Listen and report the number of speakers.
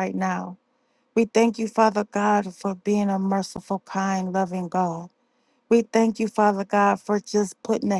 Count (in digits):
1